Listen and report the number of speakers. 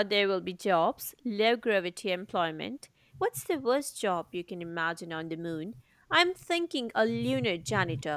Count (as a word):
one